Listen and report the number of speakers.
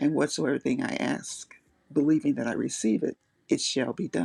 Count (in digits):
1